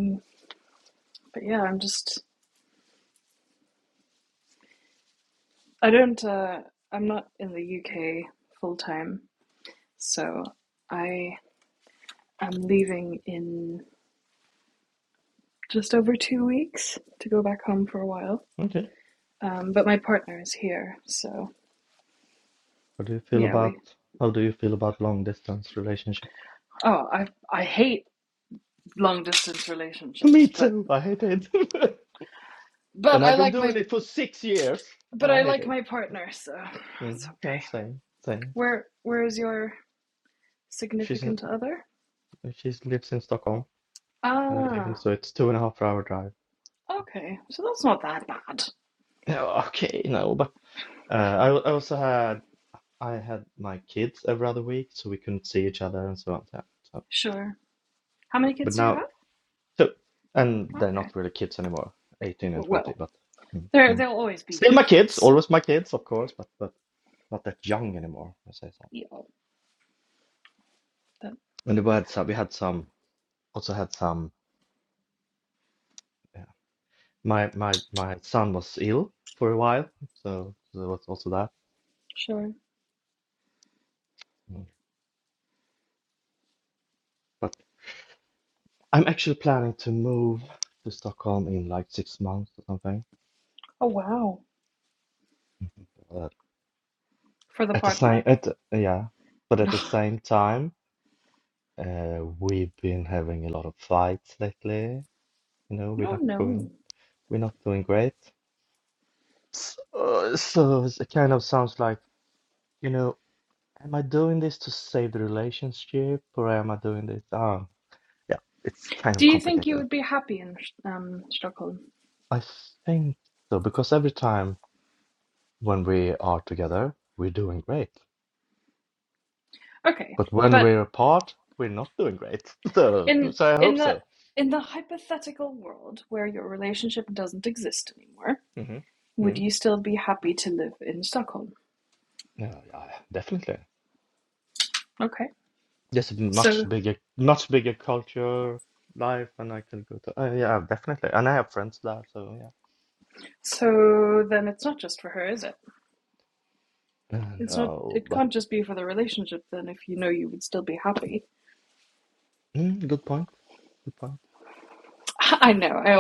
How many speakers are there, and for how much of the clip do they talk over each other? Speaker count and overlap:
2, about 6%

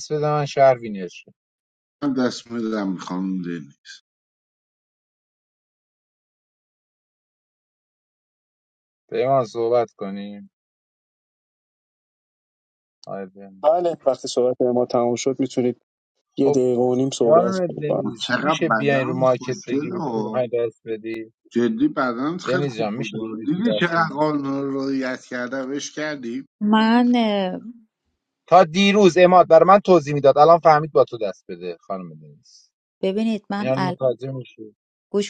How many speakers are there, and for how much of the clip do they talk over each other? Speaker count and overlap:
4, about 14%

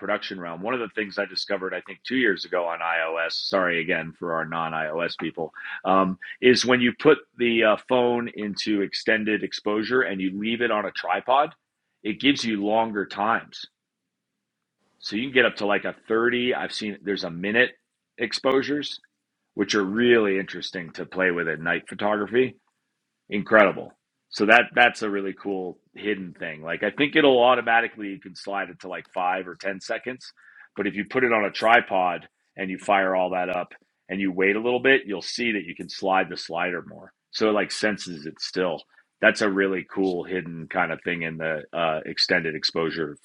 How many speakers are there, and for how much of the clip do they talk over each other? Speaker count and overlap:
1, no overlap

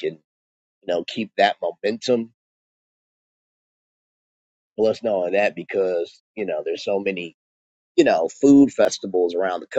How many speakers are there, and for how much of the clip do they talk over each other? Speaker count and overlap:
1, no overlap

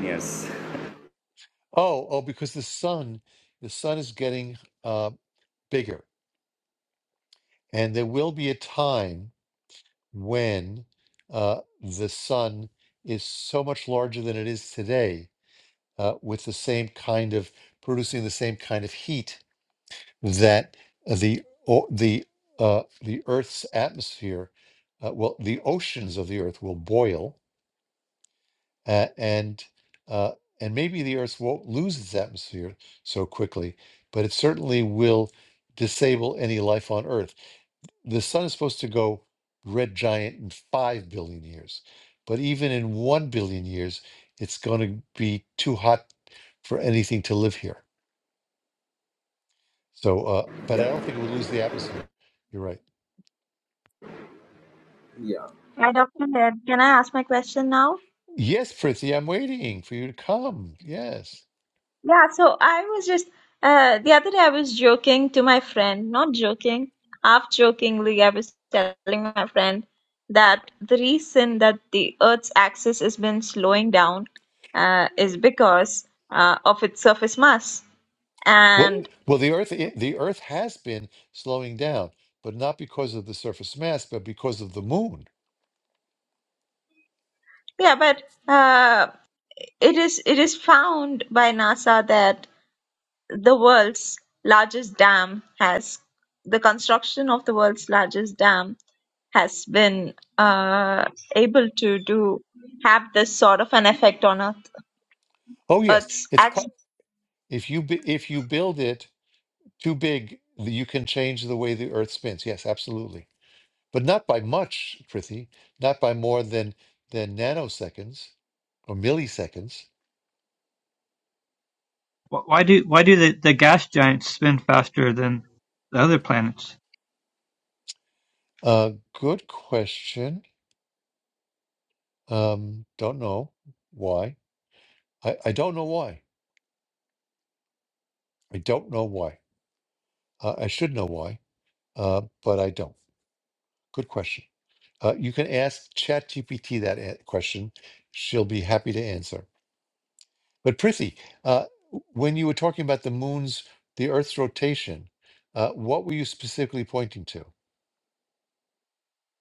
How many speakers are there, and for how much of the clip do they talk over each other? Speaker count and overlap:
4, about 1%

